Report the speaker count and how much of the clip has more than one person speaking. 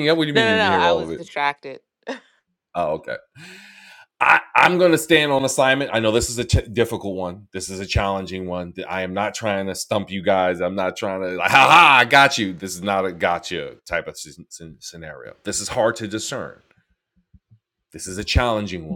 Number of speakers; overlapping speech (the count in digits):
2, about 4%